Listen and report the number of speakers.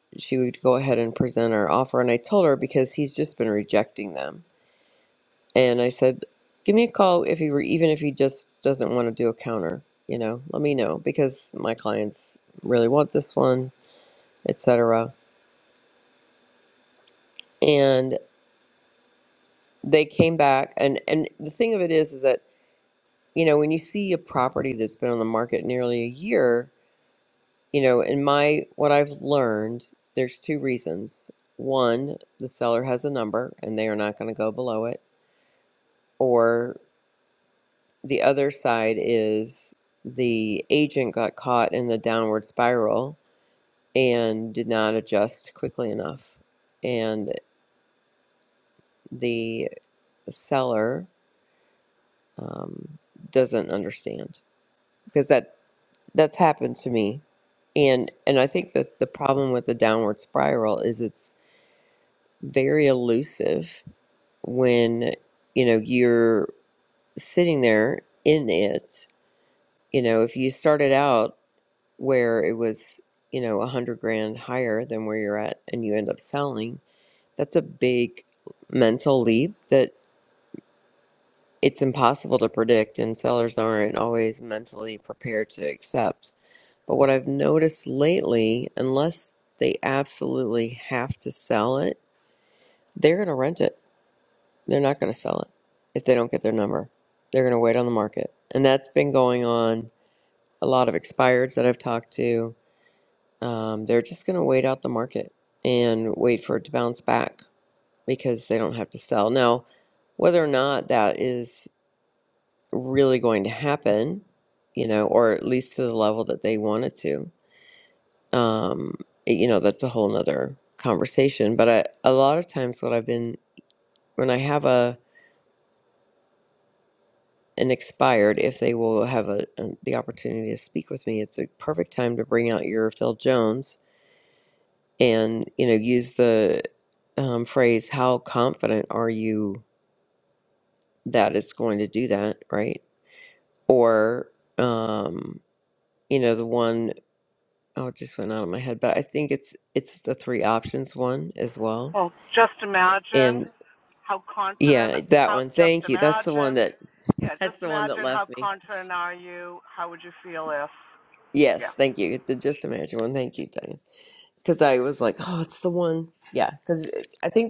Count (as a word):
two